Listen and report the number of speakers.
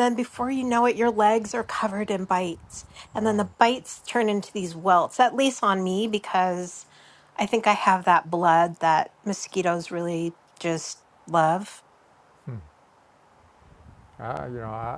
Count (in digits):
2